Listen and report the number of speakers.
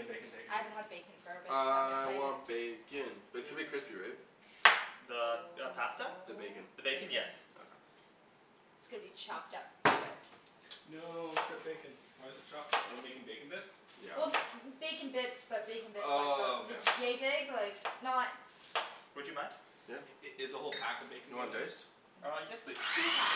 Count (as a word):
four